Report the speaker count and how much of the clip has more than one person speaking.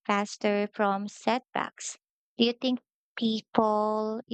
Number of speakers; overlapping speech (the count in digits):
1, no overlap